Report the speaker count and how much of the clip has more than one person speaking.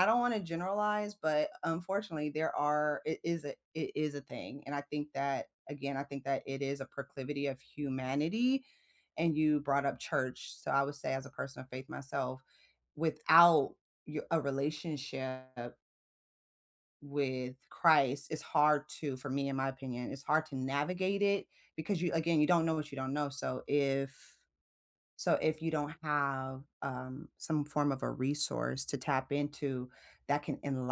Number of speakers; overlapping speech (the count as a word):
one, no overlap